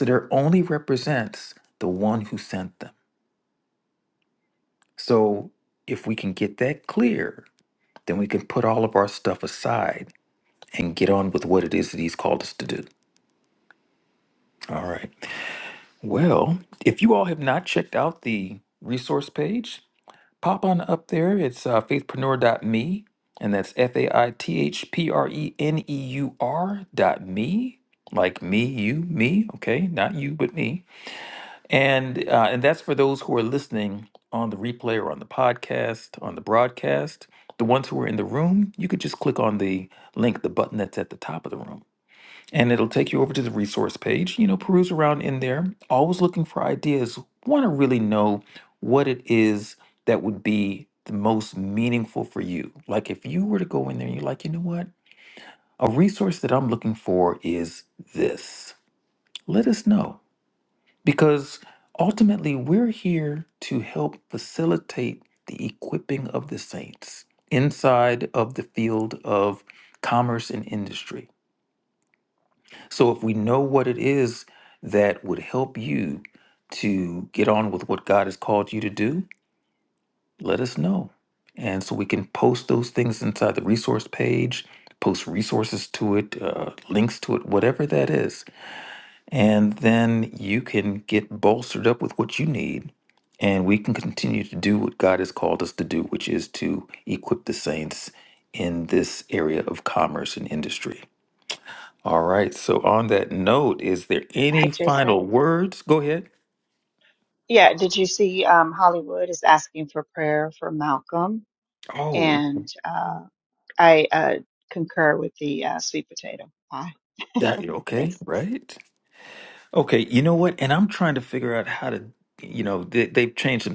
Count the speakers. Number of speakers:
2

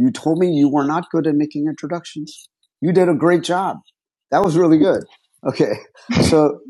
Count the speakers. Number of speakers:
1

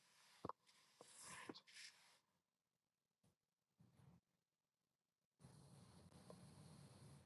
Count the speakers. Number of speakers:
0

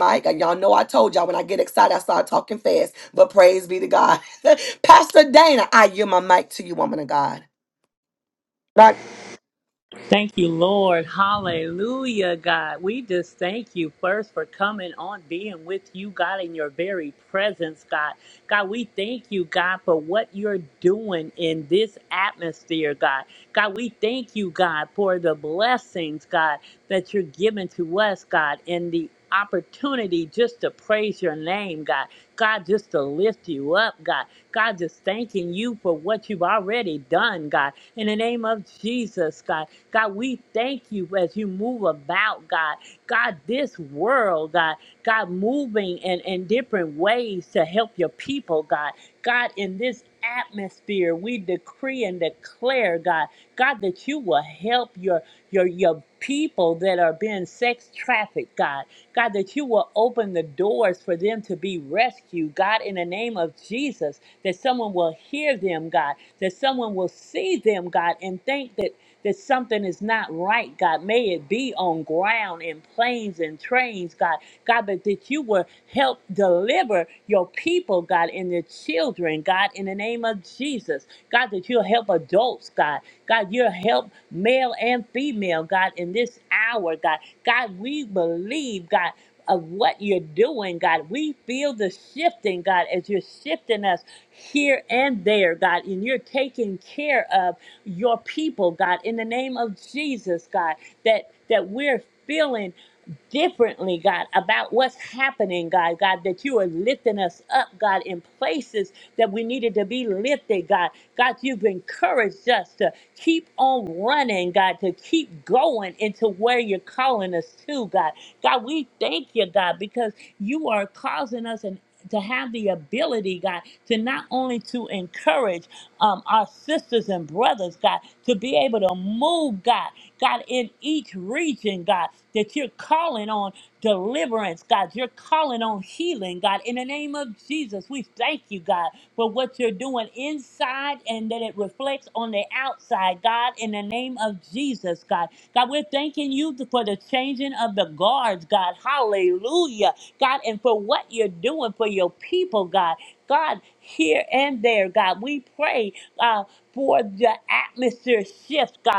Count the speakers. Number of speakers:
2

